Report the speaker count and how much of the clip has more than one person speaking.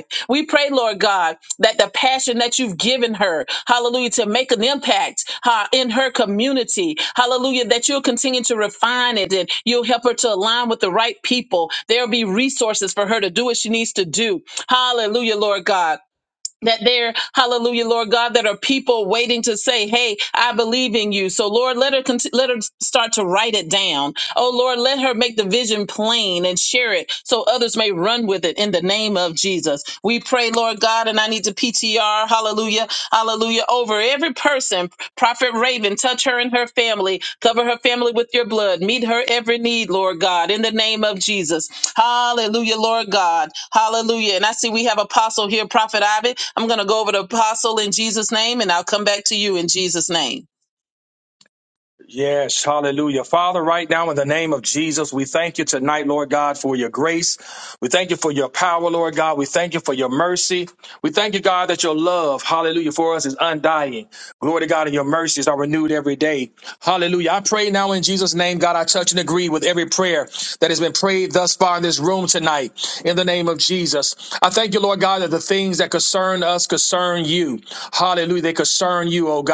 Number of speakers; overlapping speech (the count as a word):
two, no overlap